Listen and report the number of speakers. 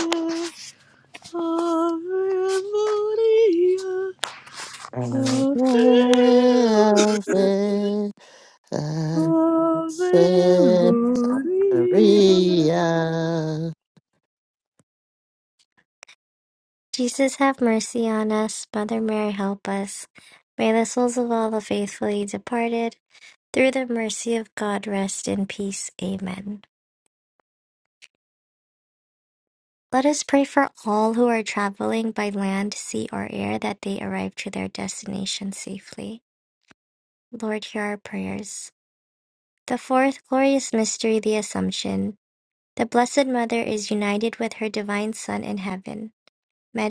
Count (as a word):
three